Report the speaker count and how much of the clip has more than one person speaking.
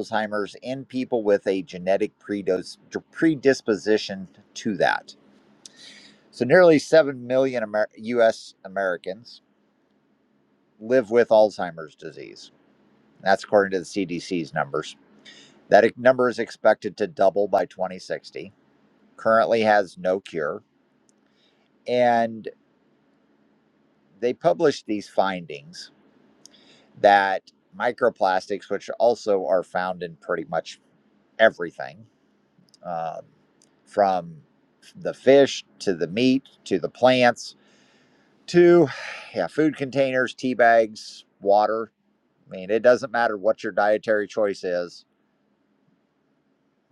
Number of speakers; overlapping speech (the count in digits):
1, no overlap